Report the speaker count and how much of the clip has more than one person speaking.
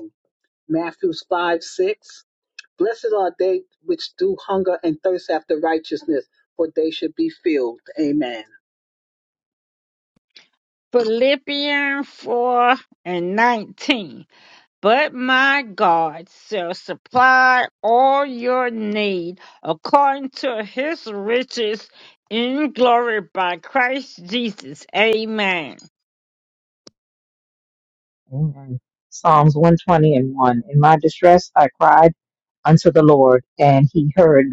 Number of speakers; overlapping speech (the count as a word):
three, no overlap